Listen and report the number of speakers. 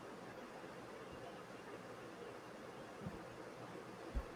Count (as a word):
zero